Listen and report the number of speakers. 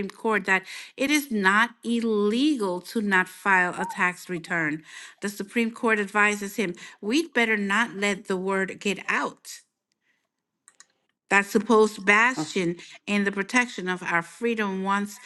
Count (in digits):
1